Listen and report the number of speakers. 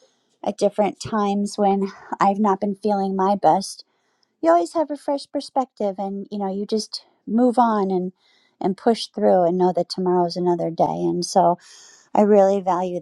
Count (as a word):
one